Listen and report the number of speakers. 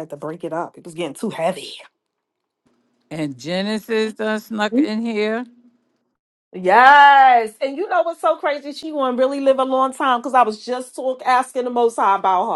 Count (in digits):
2